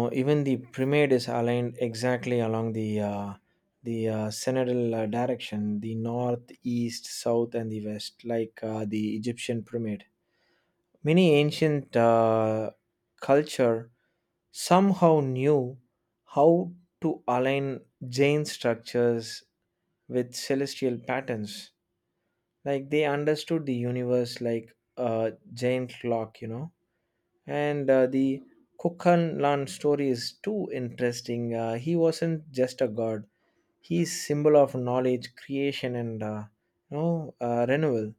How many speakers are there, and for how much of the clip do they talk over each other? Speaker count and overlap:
1, no overlap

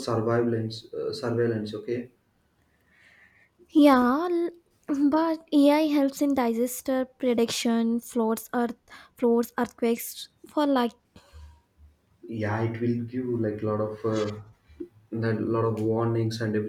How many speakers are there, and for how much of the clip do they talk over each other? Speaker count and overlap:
2, no overlap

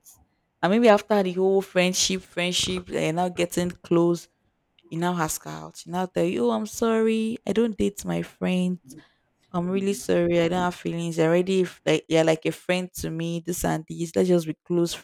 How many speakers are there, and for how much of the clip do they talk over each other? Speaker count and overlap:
1, no overlap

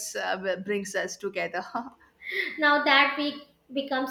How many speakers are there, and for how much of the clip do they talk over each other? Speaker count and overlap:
2, no overlap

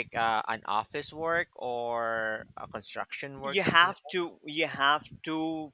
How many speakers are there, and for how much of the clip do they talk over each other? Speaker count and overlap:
2, about 13%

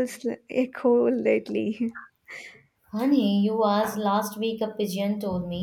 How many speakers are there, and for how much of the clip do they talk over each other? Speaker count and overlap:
2, no overlap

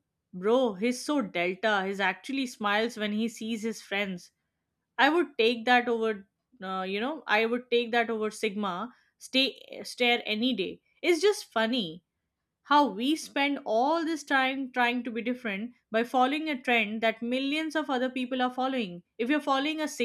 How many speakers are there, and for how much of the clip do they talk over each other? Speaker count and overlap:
1, no overlap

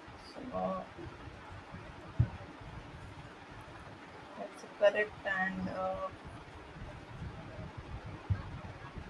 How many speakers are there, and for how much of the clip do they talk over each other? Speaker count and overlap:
1, no overlap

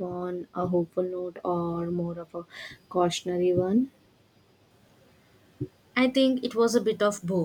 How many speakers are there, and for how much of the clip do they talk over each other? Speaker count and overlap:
2, no overlap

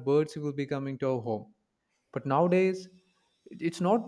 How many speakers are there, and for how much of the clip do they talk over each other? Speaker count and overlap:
1, no overlap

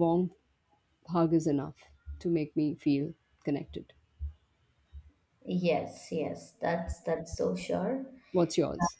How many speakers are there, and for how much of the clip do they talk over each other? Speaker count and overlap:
2, no overlap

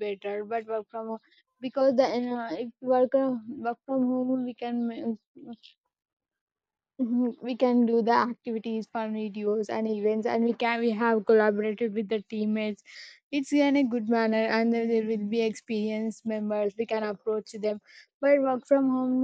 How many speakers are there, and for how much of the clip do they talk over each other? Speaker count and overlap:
1, no overlap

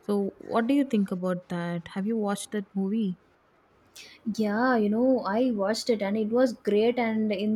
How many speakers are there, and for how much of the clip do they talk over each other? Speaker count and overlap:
2, no overlap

